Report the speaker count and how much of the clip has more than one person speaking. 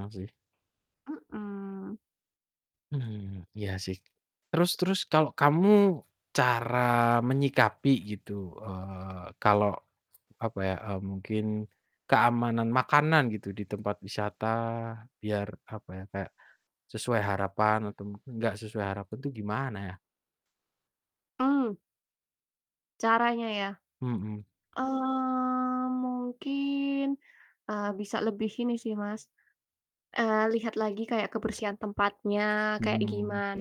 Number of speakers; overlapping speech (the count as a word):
two, about 2%